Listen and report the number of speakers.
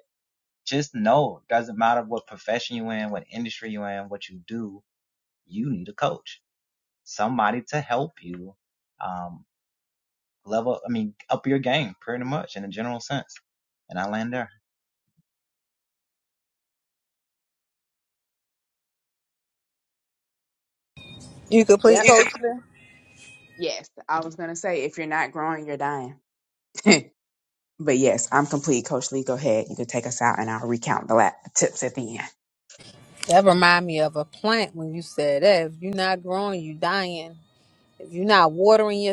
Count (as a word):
three